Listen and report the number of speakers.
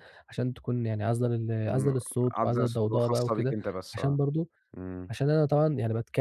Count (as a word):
two